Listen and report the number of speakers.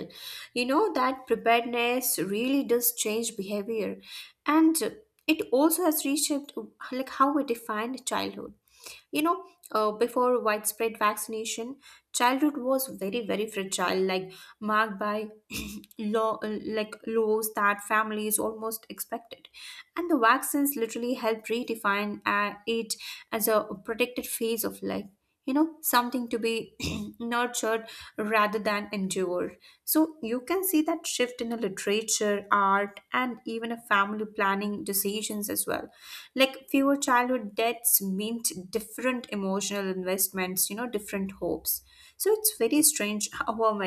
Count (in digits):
1